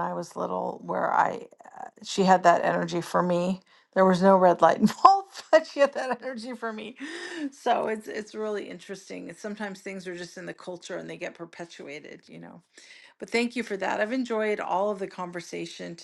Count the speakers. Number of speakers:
1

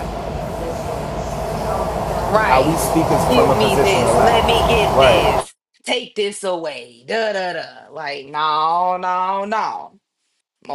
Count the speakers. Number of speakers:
2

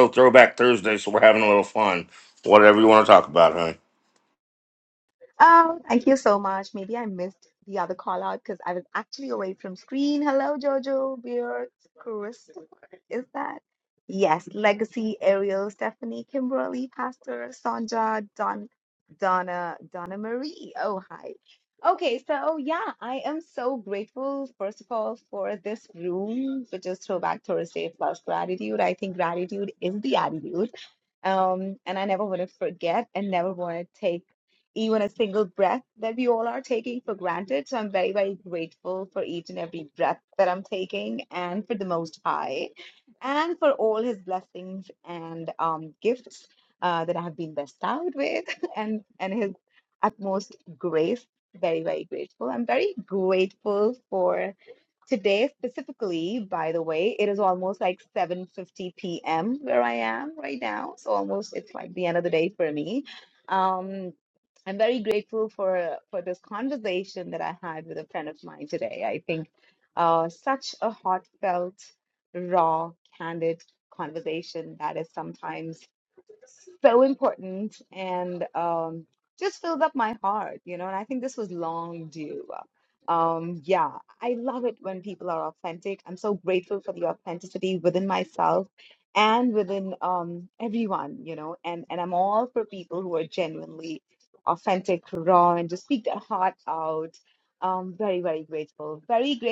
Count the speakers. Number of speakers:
2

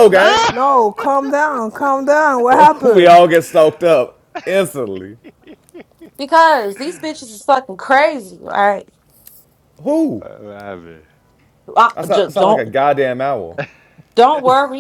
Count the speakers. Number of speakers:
4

